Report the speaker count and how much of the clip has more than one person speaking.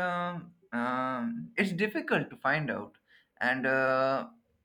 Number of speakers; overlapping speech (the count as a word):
one, no overlap